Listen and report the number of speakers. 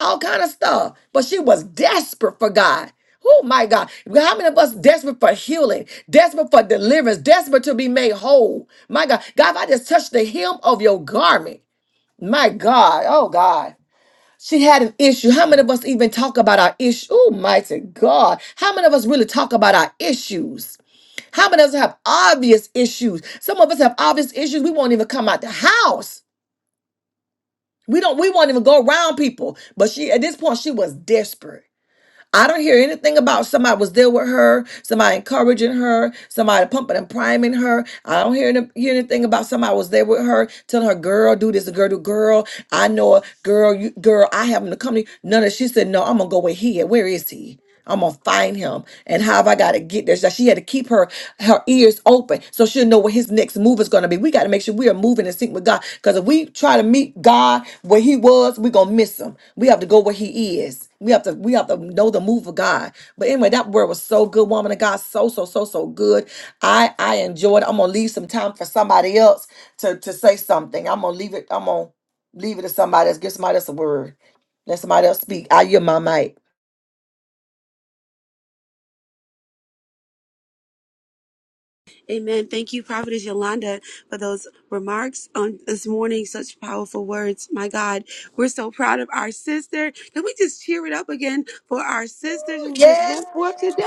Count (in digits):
2